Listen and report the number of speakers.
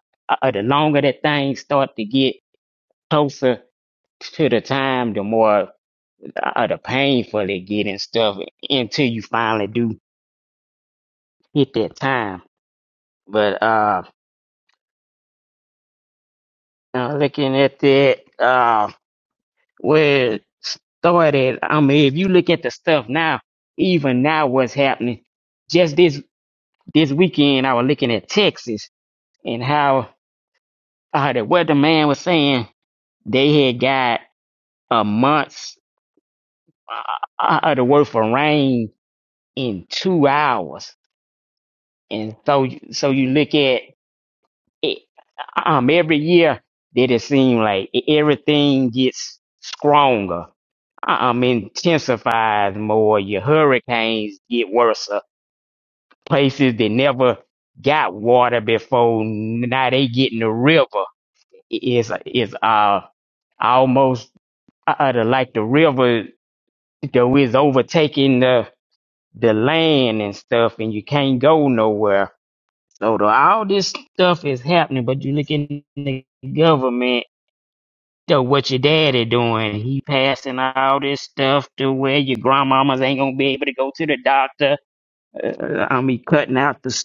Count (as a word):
one